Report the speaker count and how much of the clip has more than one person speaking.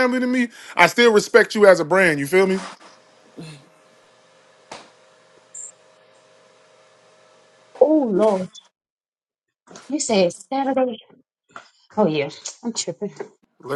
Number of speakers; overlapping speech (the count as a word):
two, no overlap